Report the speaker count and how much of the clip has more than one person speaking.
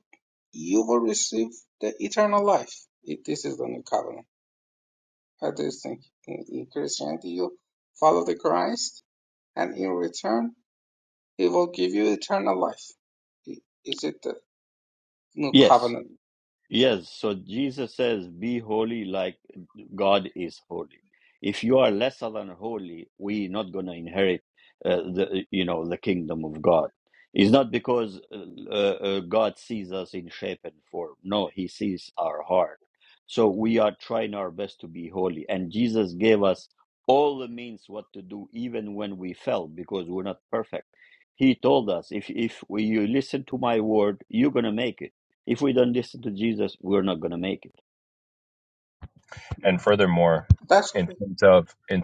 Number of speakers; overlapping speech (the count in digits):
3, about 1%